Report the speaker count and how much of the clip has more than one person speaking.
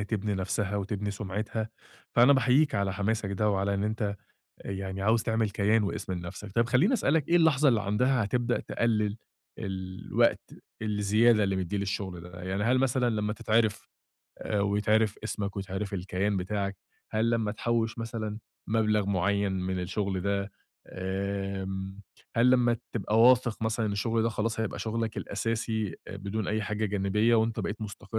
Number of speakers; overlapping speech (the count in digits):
1, no overlap